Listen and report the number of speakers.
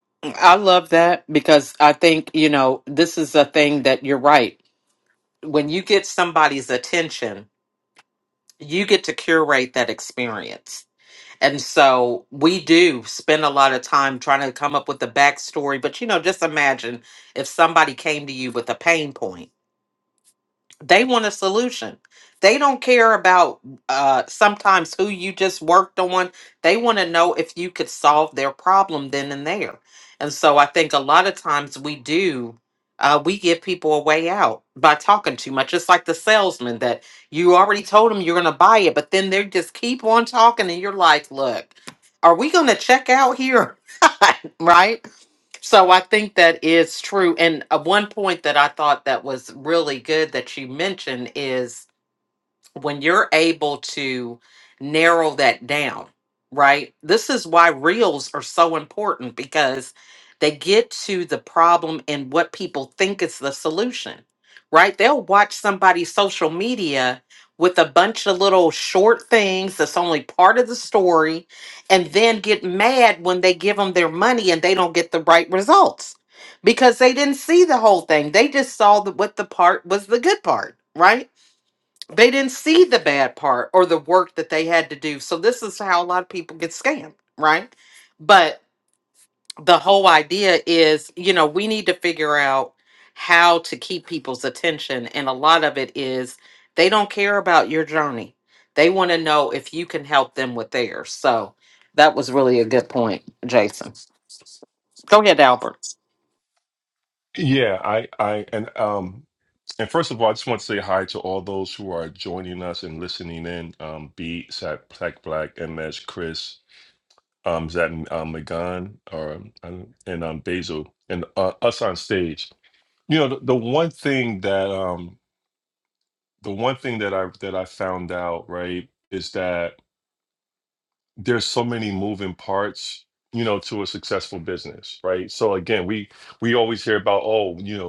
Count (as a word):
two